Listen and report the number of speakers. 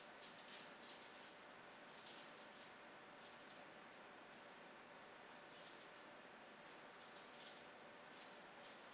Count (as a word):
zero